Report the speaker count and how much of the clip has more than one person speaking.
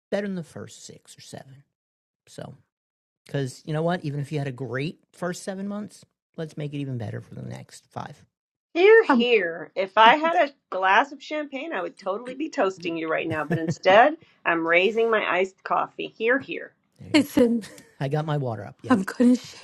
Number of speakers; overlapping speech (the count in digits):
3, about 3%